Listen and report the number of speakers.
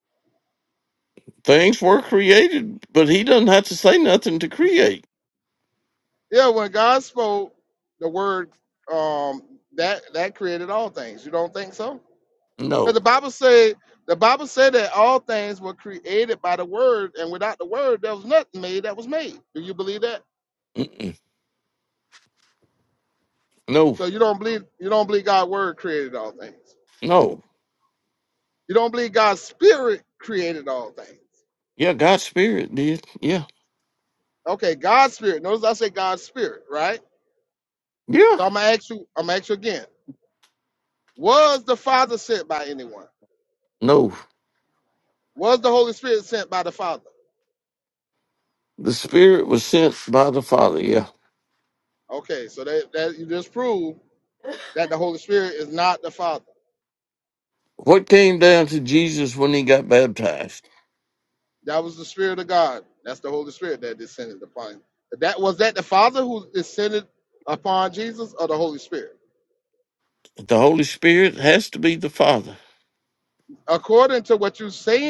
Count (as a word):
two